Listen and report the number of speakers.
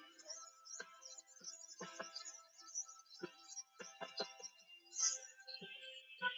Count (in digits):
0